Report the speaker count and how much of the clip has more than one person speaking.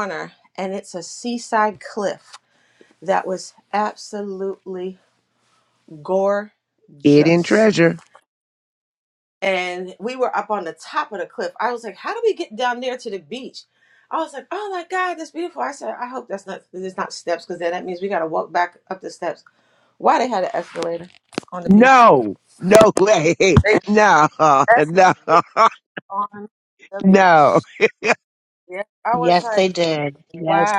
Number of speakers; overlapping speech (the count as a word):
three, about 6%